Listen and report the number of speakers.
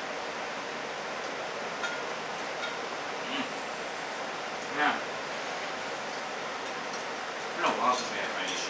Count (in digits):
1